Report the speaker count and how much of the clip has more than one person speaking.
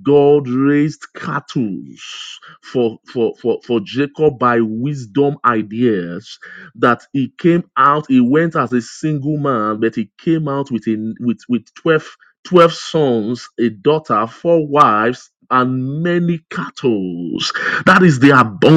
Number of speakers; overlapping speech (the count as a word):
one, no overlap